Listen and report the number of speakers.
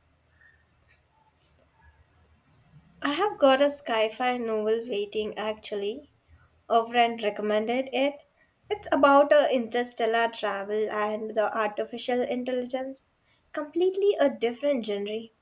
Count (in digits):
1